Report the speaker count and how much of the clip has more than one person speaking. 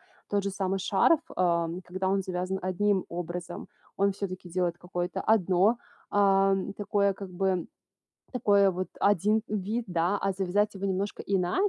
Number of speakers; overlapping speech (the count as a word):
one, no overlap